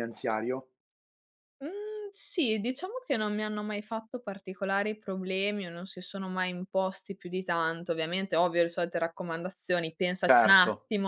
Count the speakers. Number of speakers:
2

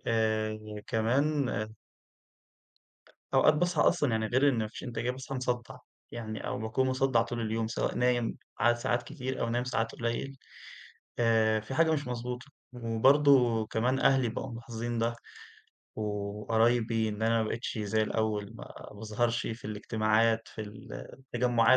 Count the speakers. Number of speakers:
1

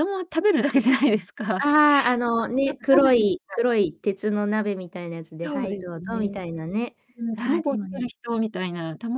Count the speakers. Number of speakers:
2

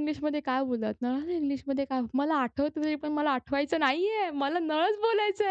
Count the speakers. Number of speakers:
1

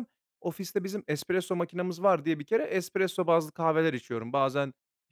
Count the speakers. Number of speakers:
1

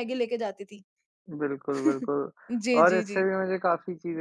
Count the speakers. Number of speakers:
2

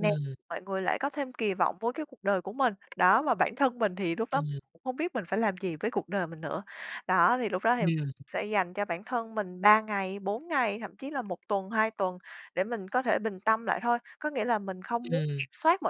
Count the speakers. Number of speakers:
2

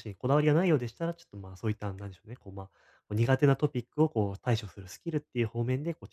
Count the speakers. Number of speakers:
1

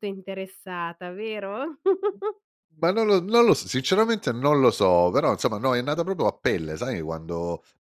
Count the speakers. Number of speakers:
2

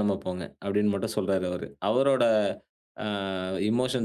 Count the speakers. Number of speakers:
1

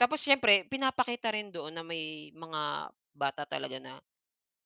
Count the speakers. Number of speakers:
1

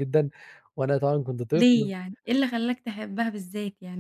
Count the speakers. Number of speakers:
2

